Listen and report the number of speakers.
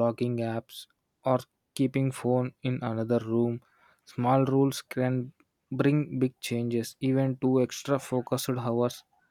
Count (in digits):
1